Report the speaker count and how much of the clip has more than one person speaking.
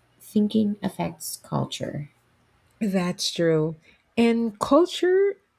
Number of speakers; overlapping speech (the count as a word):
two, no overlap